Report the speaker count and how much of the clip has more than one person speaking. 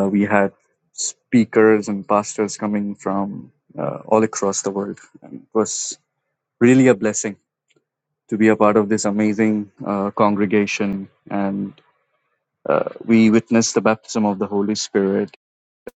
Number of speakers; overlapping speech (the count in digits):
1, no overlap